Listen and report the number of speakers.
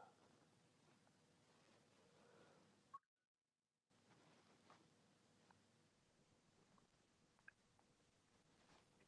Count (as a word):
zero